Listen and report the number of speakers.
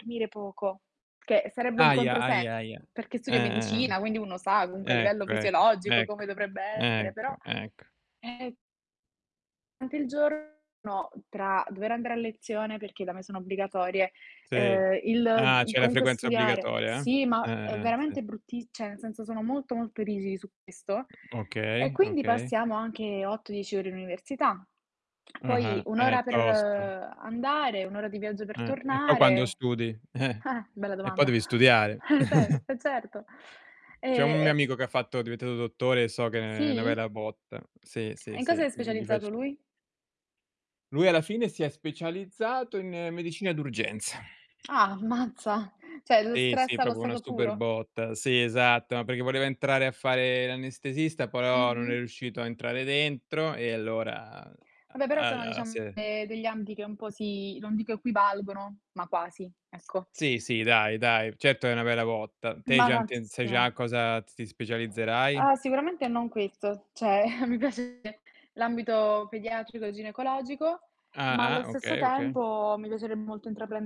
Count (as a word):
two